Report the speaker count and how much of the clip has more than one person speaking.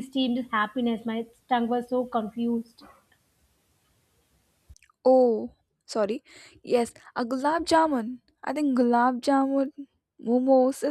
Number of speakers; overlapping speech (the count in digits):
2, no overlap